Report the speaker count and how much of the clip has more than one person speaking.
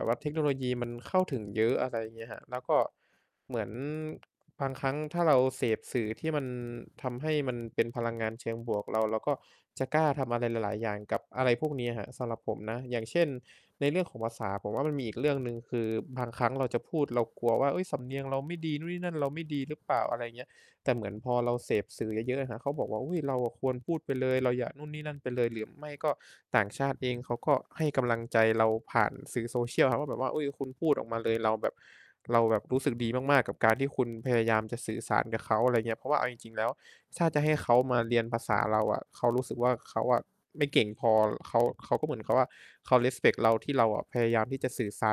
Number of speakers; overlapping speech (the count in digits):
1, no overlap